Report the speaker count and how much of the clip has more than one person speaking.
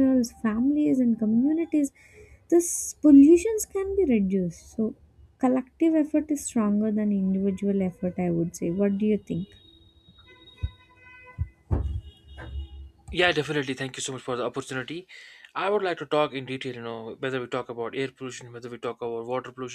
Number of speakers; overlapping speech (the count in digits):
2, no overlap